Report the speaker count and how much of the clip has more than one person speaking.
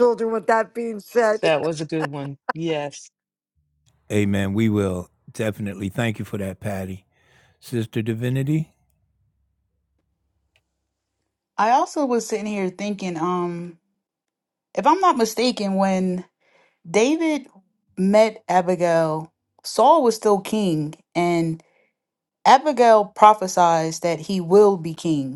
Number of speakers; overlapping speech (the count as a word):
four, under 1%